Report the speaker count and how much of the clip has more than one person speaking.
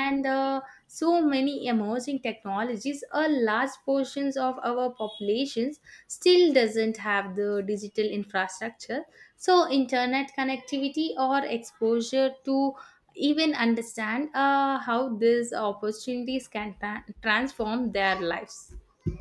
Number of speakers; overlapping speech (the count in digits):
1, no overlap